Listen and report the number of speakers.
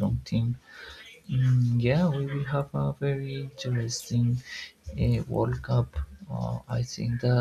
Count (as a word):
one